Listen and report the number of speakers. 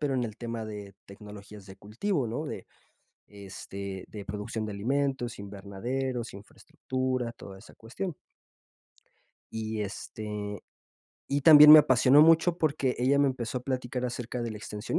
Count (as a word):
one